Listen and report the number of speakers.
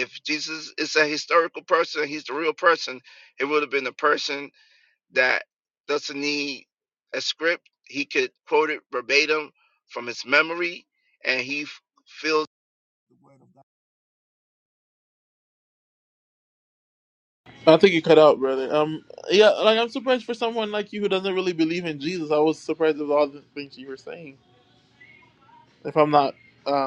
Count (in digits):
2